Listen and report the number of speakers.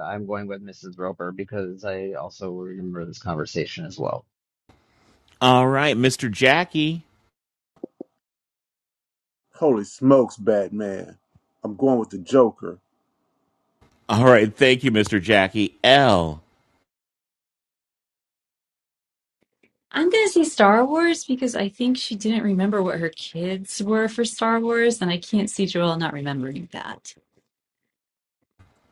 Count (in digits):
4